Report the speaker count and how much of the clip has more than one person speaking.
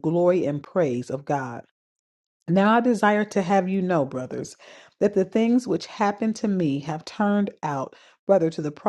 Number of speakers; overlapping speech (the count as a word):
one, no overlap